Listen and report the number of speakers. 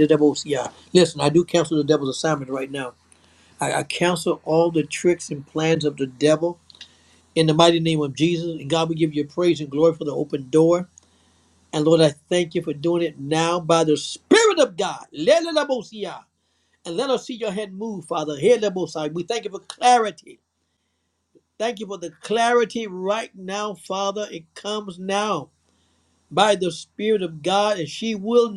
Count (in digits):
1